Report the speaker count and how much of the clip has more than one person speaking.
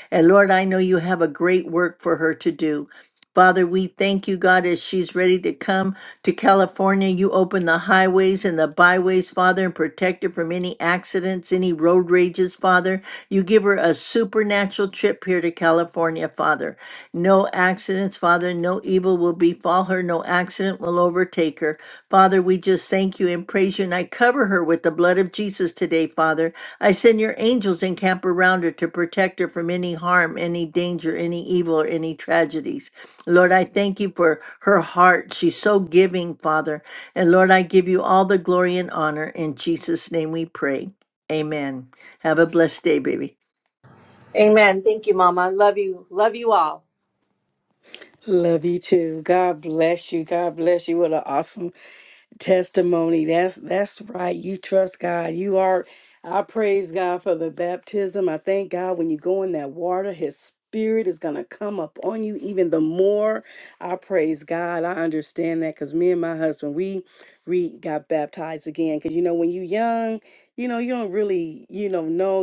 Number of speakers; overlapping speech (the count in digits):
3, no overlap